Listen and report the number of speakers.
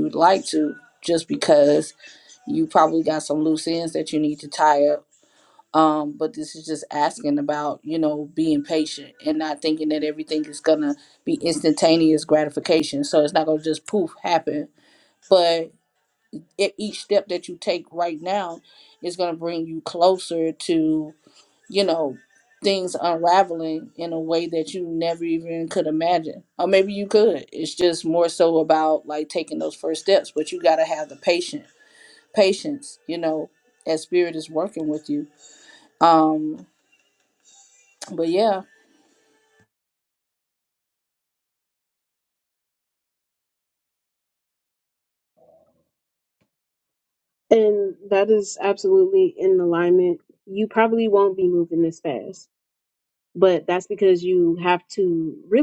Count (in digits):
2